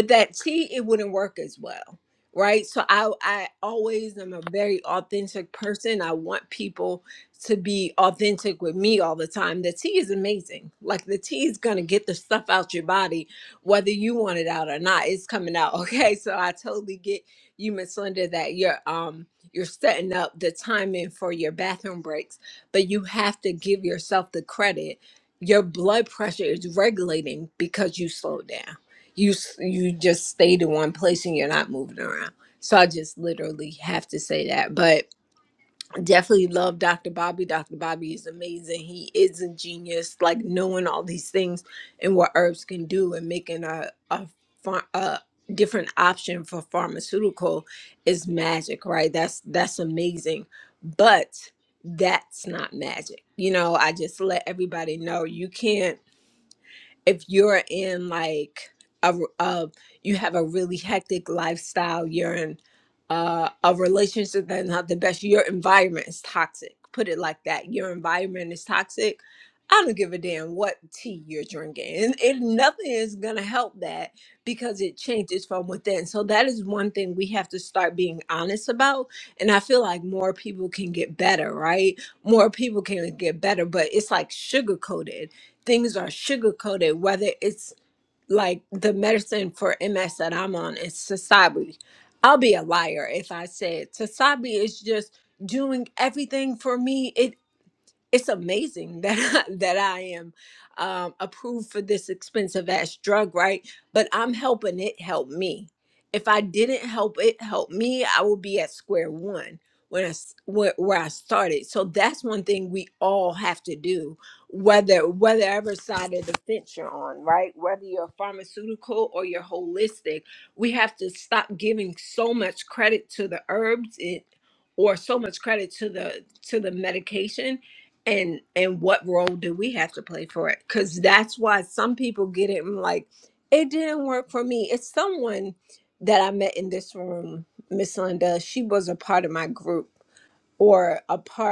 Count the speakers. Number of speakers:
one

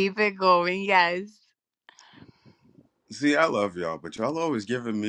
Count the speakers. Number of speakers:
two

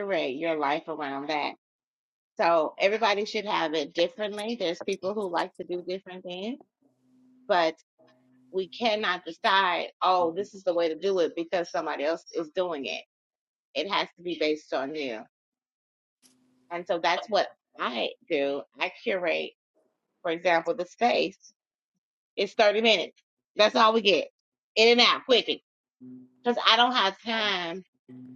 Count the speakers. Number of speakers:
one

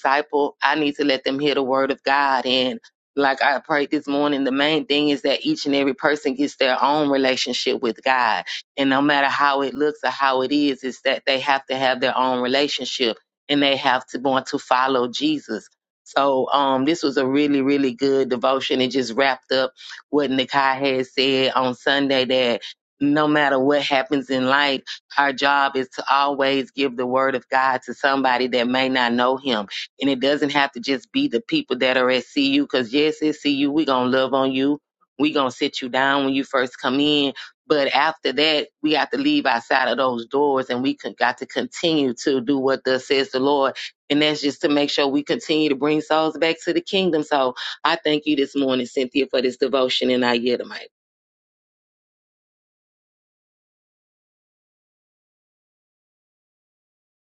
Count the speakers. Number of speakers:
one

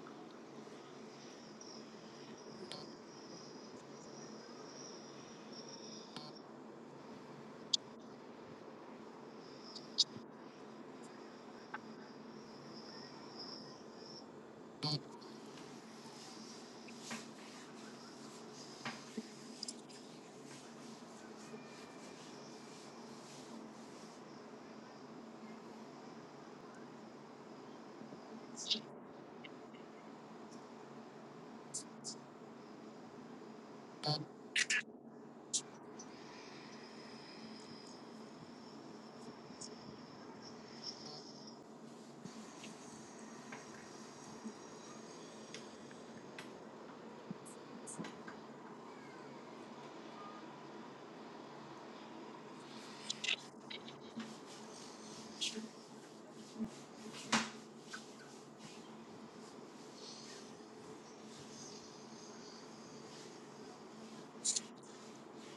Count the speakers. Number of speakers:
zero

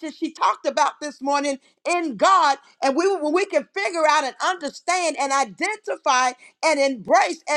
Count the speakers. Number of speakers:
one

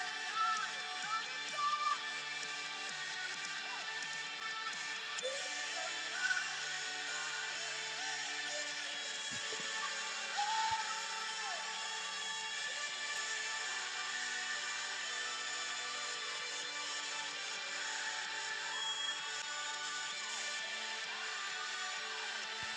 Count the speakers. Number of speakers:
zero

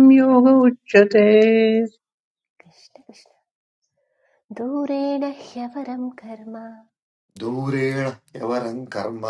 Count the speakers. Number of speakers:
three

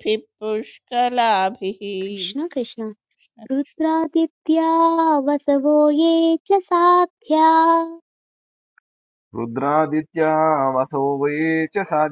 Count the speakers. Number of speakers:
three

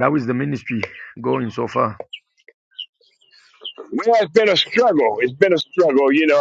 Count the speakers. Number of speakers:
two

